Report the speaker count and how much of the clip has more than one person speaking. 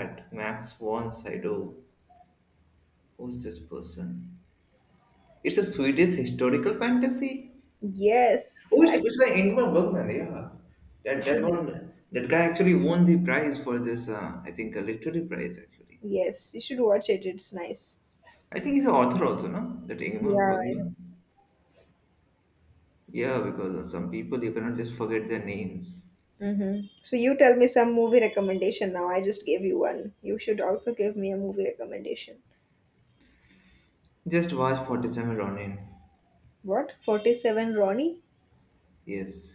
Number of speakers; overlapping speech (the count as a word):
two, about 3%